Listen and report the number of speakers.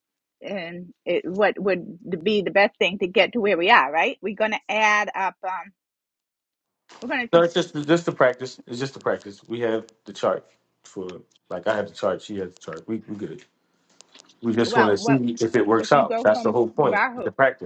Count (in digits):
2